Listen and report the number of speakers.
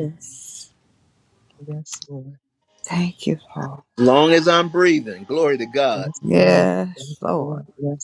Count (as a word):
three